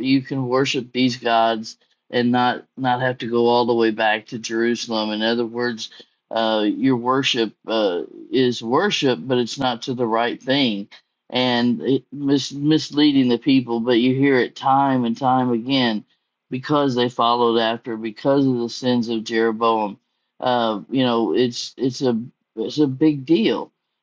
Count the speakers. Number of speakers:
one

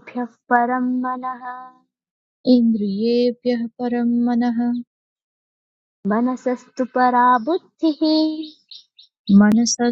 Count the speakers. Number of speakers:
two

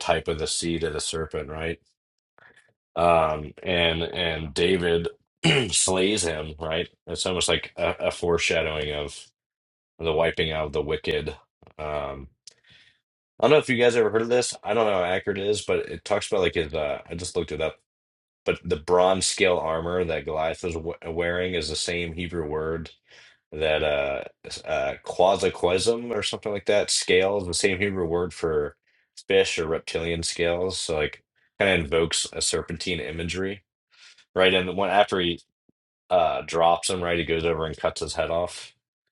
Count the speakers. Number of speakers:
one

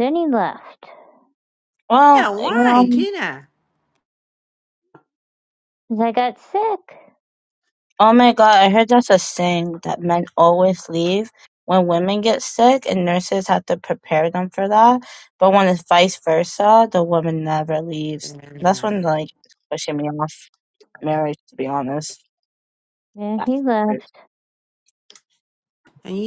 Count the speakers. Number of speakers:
three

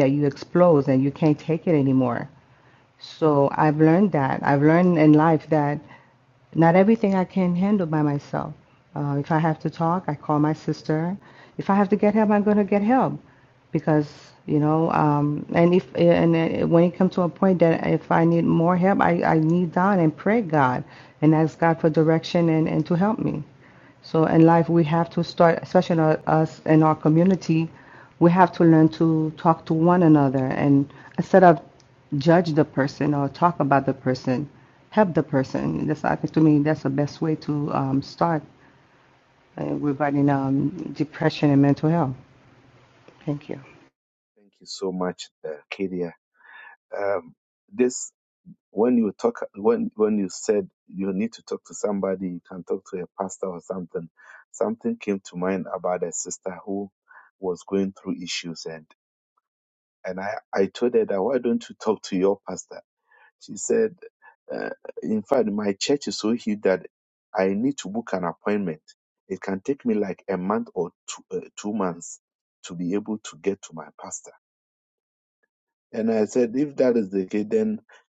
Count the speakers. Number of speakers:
two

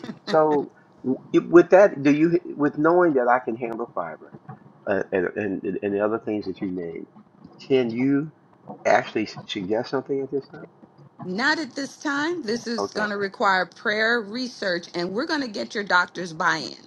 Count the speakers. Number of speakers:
two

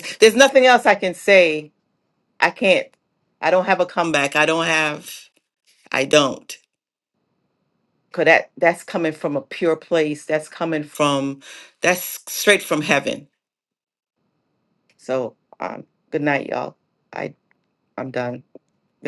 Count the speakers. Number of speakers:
one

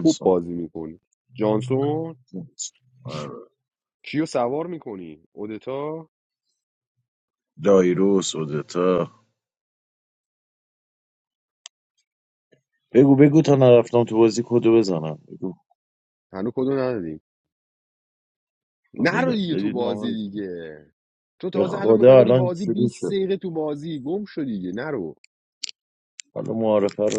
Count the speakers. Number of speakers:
two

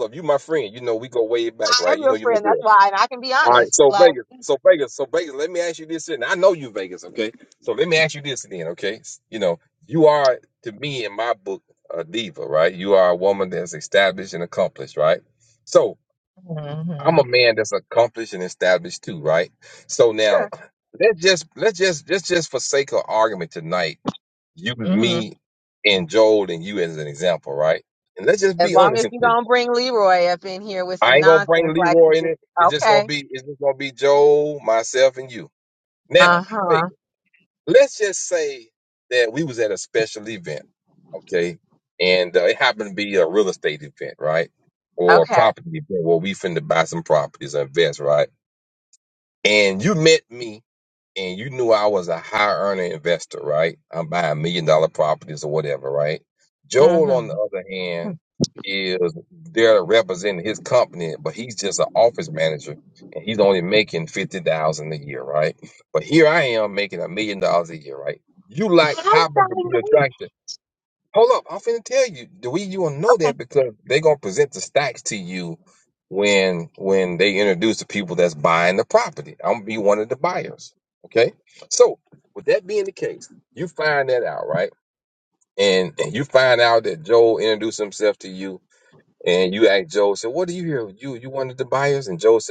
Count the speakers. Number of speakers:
two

